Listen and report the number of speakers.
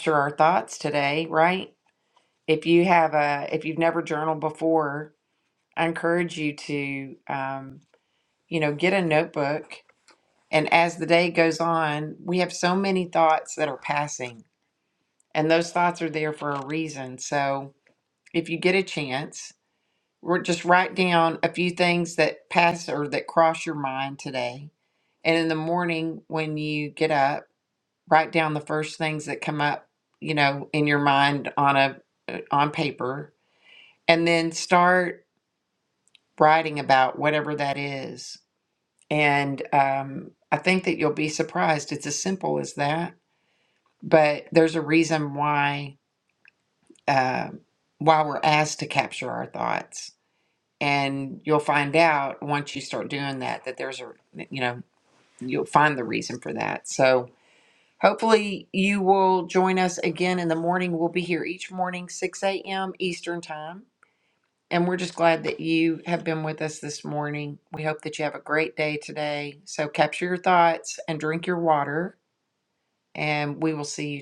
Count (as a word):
one